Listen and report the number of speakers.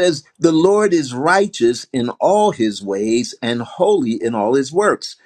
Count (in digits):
1